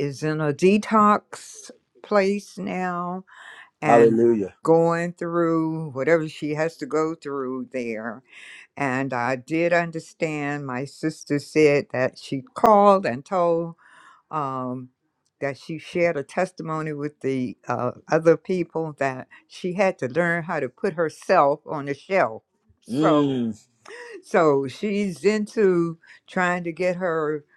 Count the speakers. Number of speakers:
2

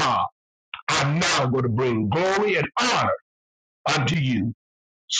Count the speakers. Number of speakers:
1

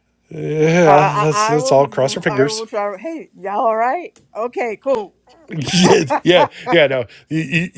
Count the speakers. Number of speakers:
2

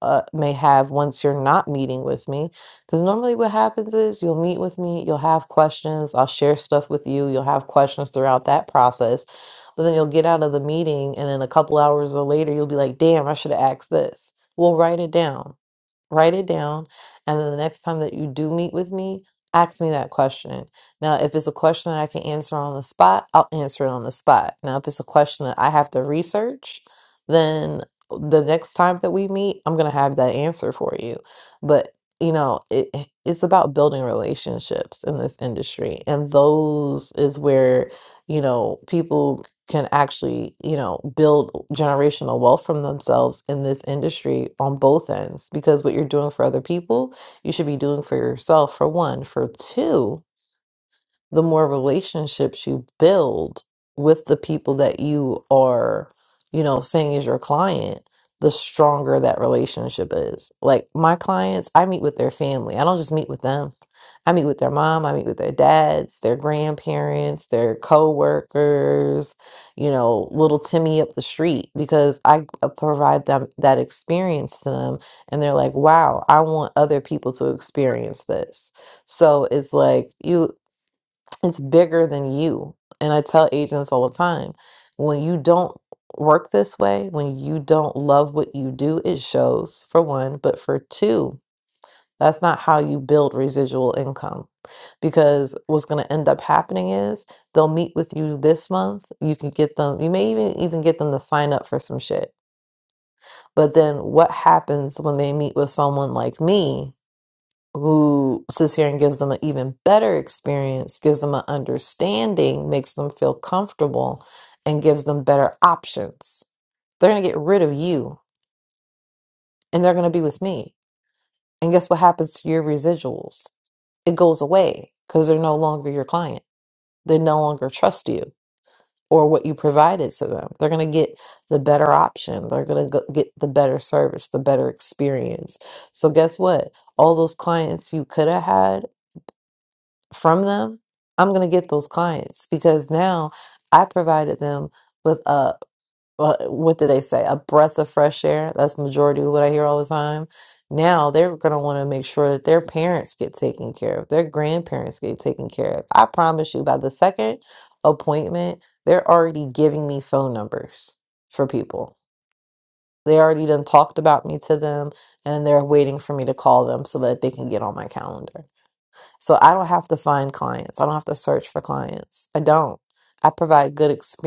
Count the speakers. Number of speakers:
1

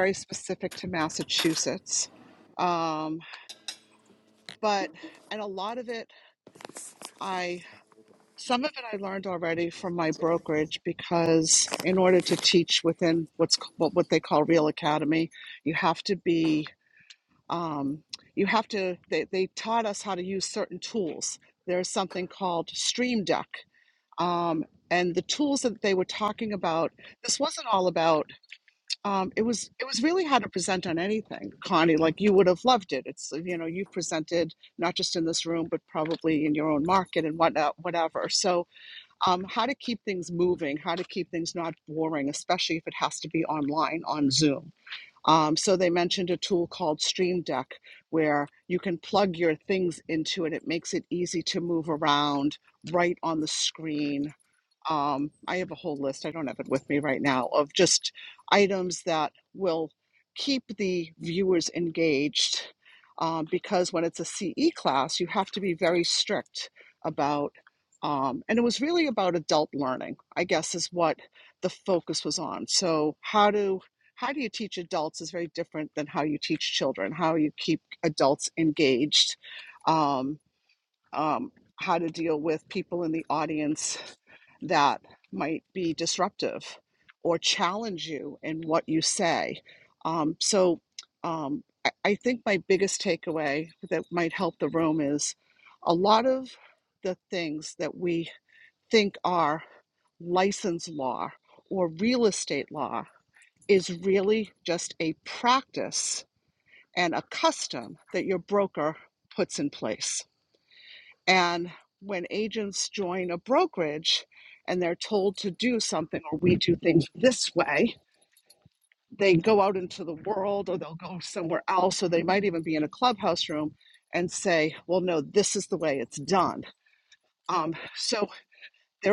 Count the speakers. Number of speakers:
1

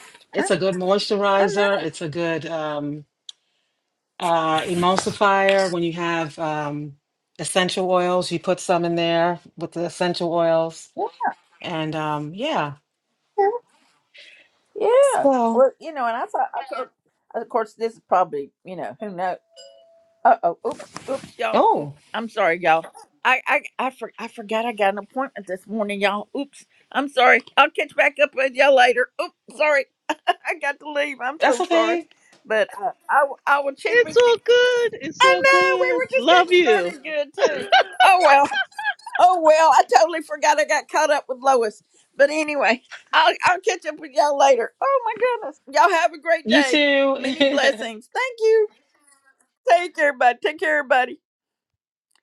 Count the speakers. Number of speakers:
3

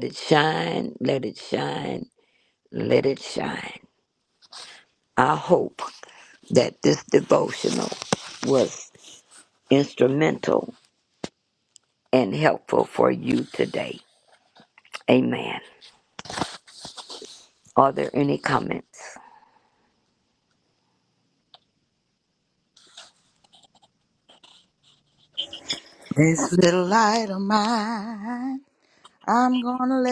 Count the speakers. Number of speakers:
2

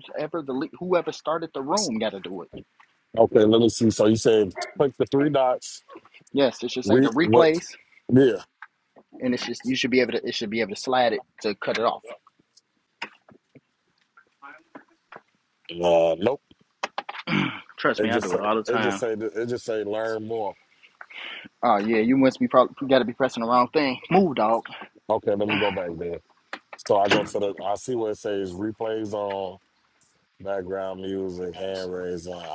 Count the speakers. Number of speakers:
2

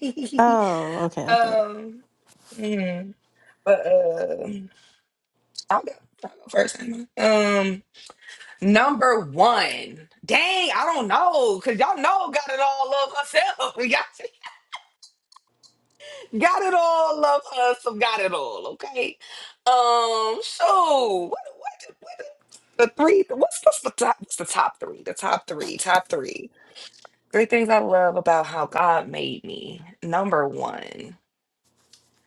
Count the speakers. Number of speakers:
2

